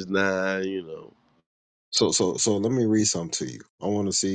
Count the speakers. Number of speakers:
2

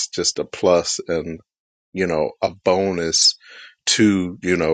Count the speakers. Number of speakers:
1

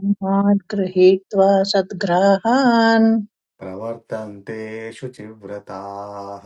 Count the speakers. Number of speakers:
2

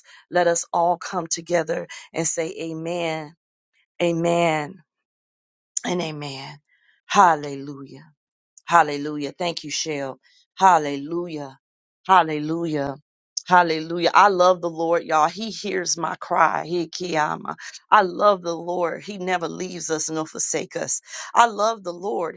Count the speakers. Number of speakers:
1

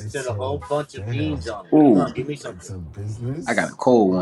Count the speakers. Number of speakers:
3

